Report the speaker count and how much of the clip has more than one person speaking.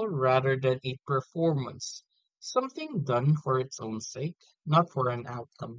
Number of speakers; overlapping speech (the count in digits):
1, no overlap